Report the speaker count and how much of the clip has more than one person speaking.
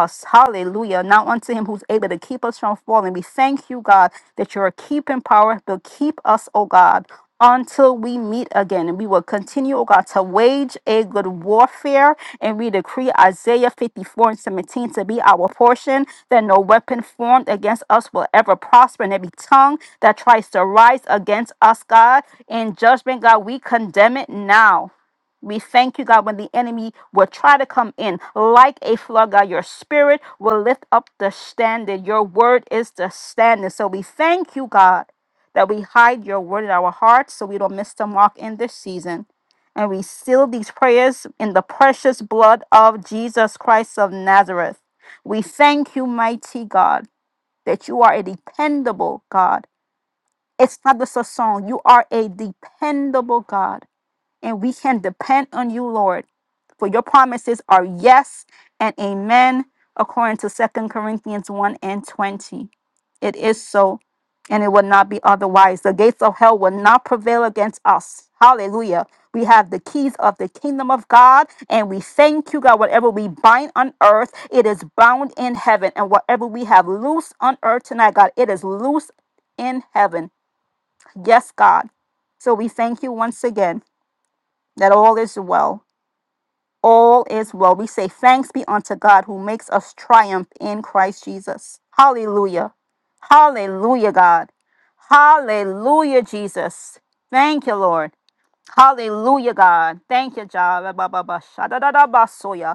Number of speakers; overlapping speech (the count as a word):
one, no overlap